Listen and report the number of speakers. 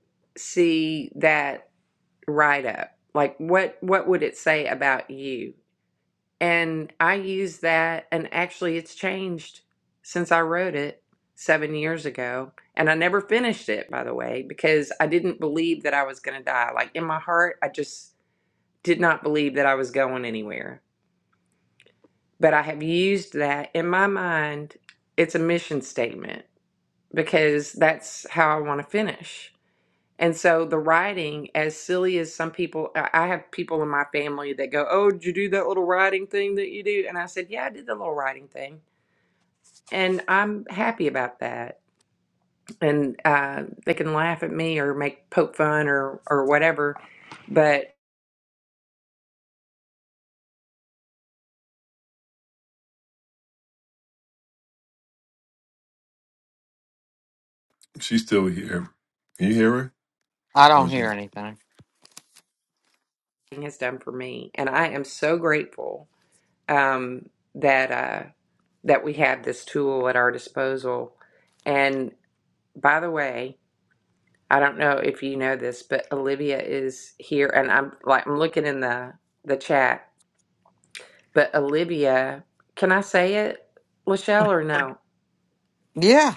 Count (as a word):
three